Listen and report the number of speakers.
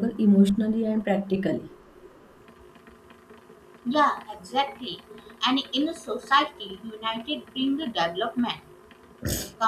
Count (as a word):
two